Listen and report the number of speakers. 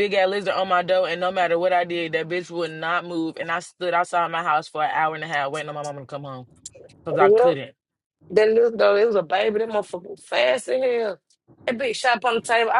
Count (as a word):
two